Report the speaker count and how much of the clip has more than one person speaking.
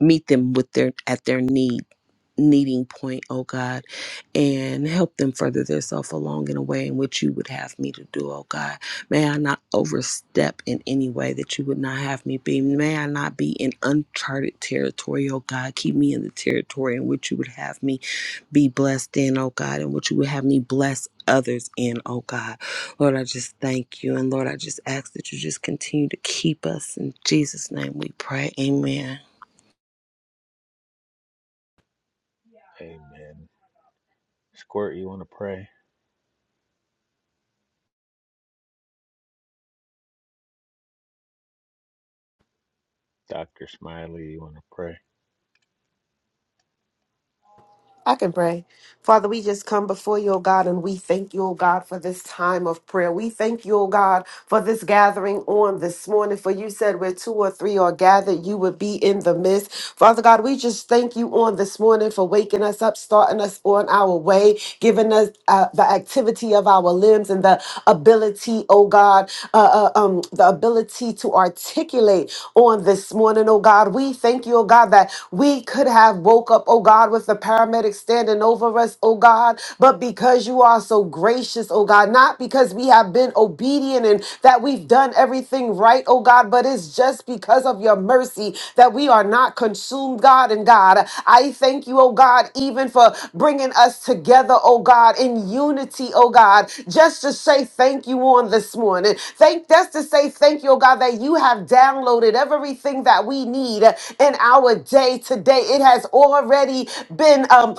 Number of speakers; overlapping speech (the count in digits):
3, no overlap